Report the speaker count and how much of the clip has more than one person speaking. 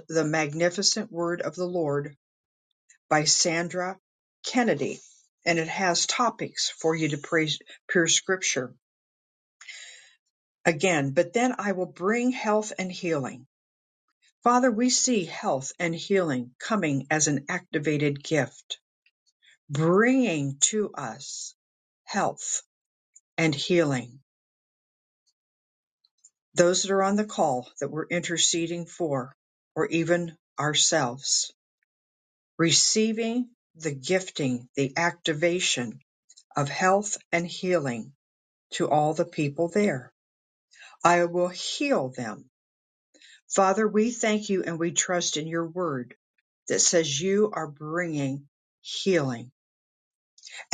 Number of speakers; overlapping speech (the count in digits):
1, no overlap